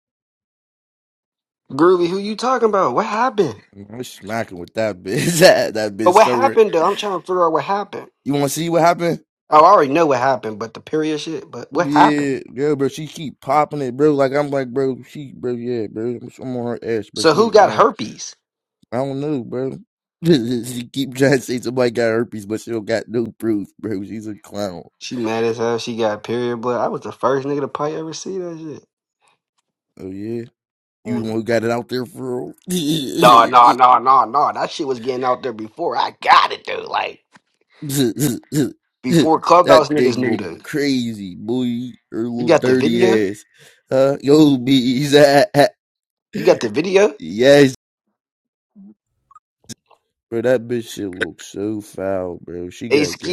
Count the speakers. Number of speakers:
two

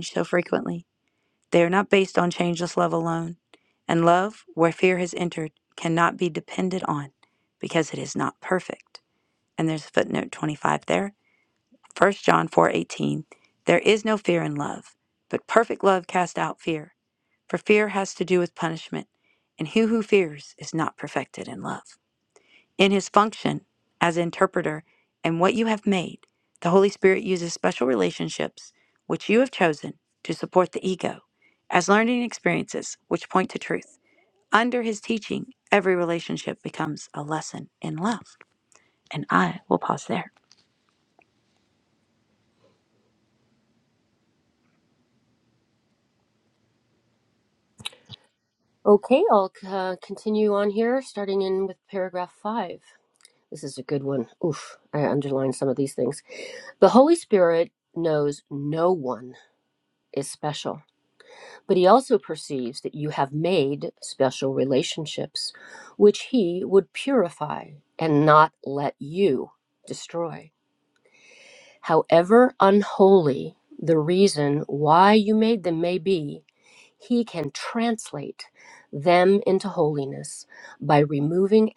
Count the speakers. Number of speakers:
two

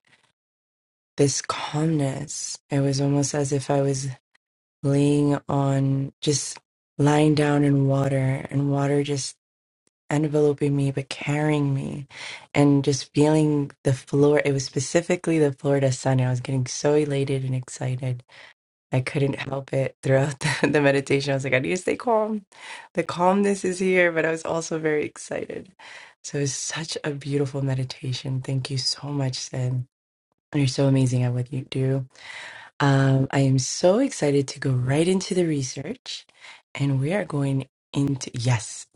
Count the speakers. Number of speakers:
one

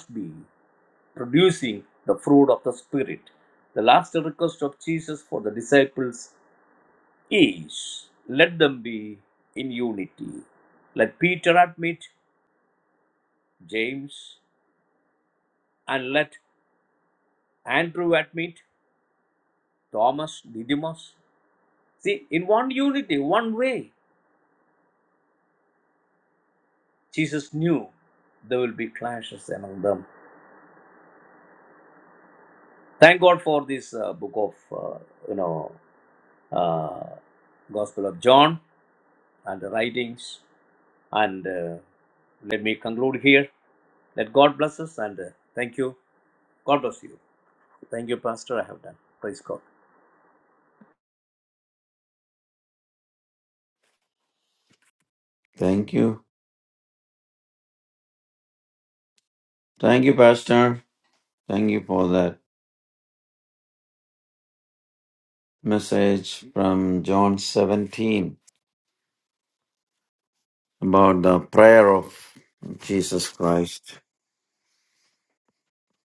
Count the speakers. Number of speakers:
two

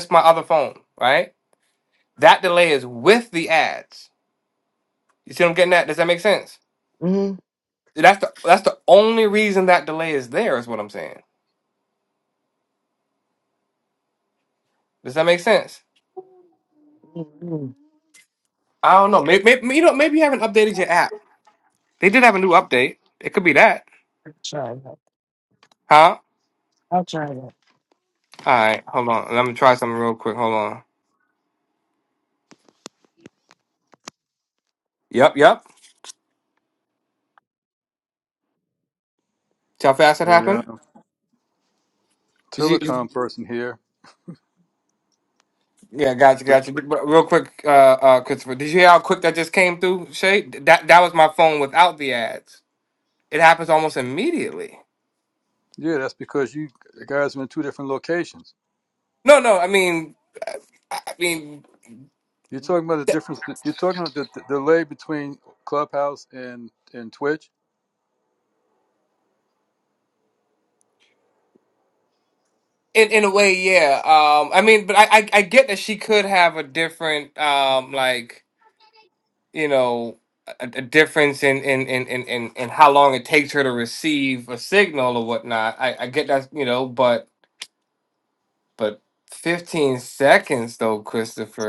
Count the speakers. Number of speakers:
three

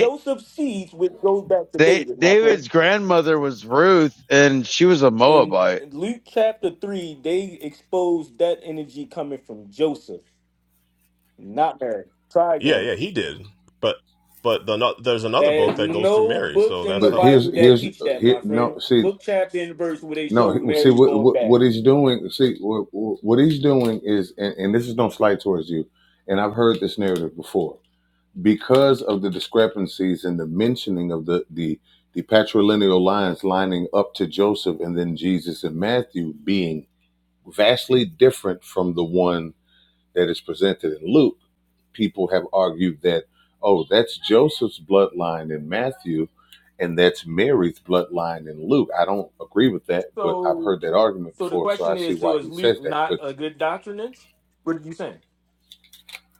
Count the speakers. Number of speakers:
four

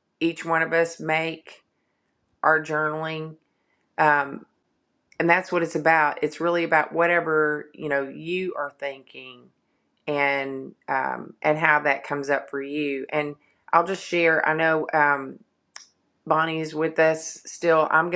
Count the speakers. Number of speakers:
one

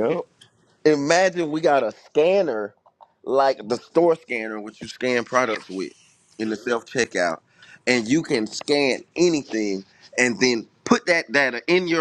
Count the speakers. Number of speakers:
one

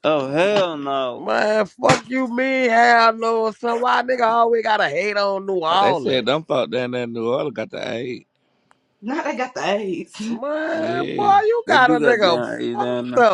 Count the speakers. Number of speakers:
four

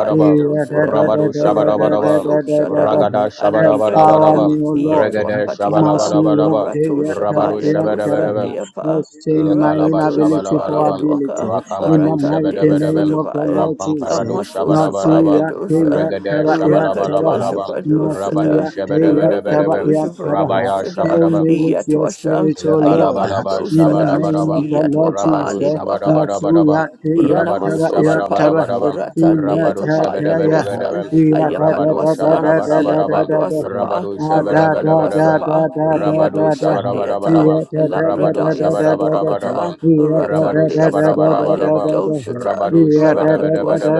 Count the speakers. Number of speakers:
three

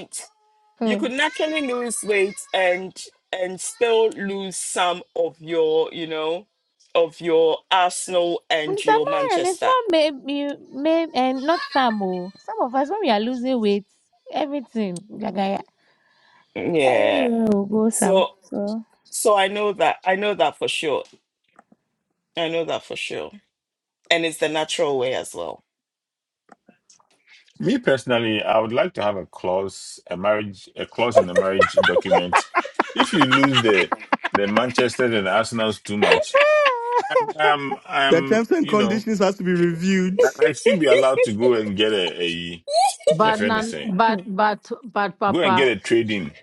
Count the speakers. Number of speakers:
five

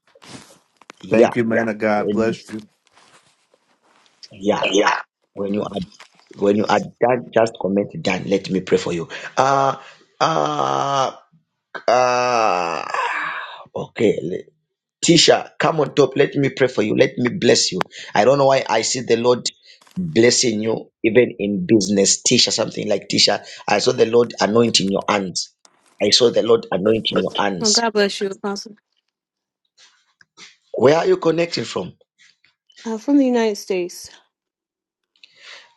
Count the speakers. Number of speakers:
three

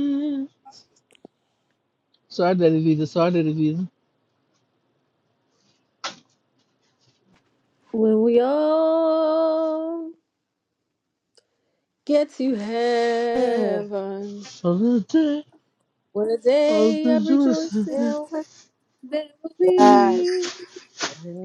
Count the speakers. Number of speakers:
three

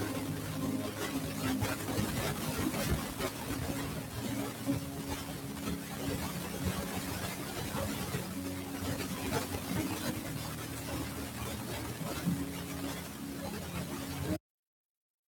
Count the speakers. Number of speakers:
zero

